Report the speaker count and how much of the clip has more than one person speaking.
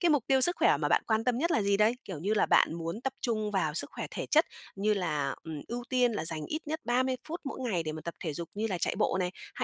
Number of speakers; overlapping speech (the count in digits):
1, no overlap